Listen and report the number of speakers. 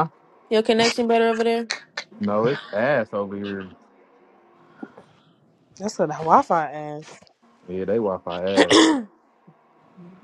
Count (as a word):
three